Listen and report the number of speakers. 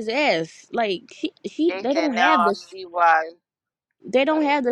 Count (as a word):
two